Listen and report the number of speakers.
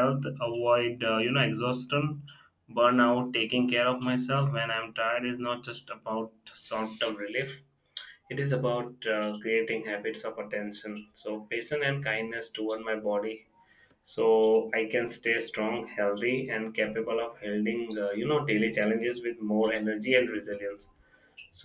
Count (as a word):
one